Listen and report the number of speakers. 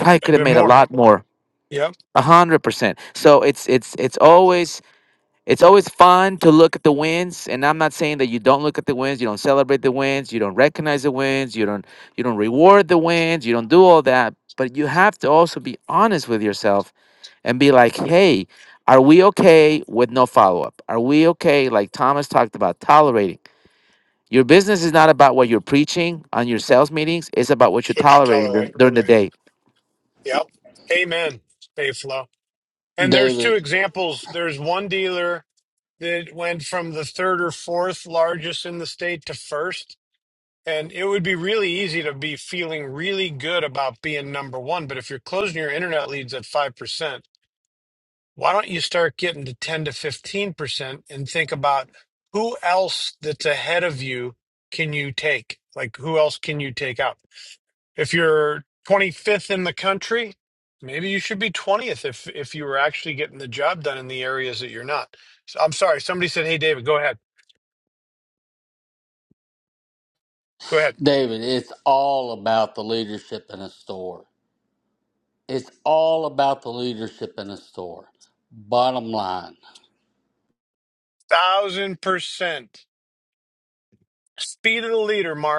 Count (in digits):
3